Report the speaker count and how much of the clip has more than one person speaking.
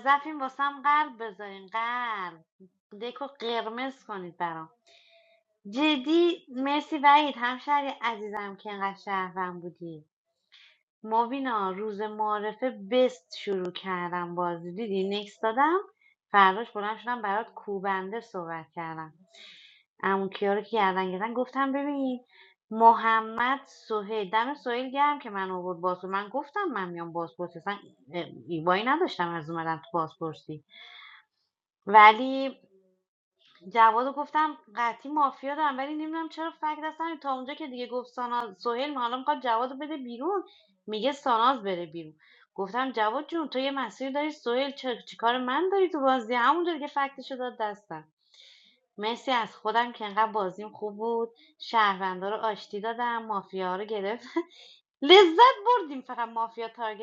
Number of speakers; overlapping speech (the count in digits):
1, no overlap